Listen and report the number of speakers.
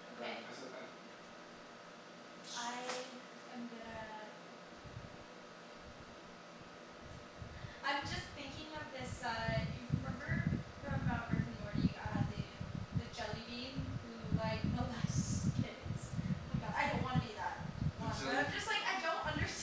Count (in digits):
2